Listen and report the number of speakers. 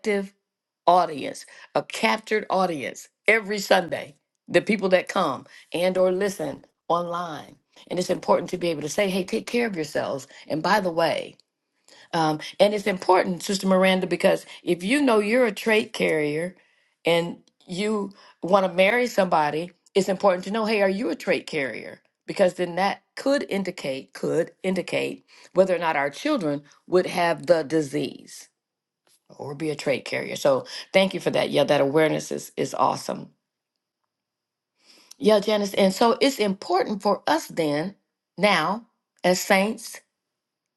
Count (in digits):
1